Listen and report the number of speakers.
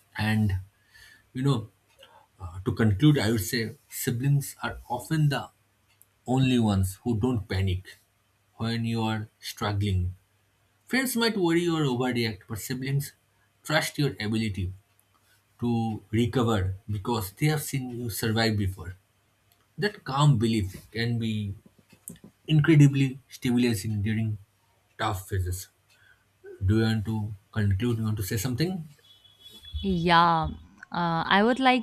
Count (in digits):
2